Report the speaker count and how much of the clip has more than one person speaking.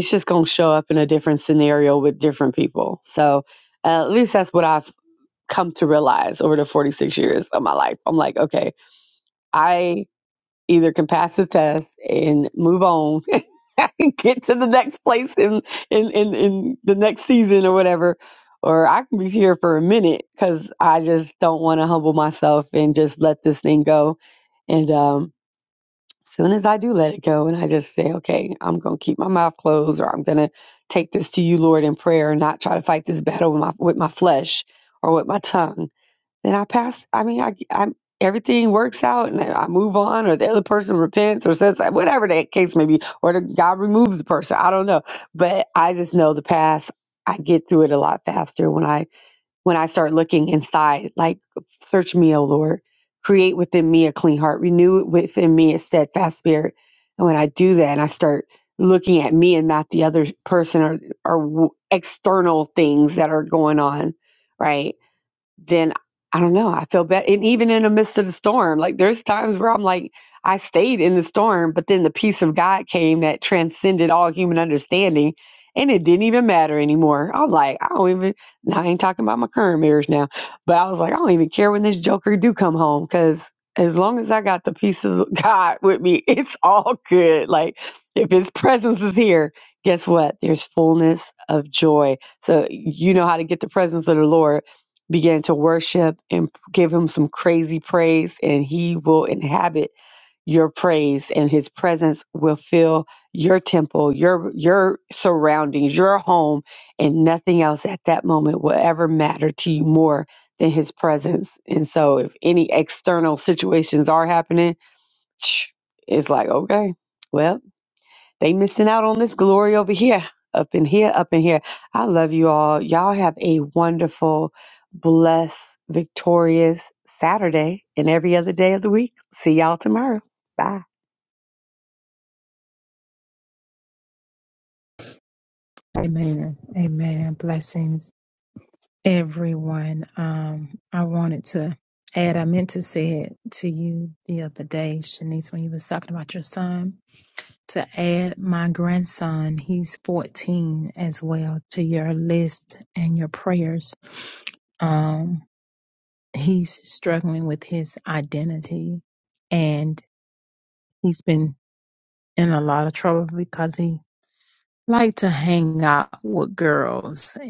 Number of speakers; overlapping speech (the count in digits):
2, no overlap